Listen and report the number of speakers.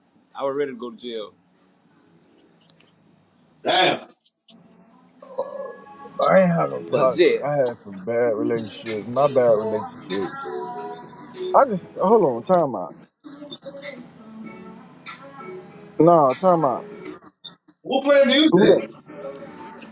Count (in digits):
3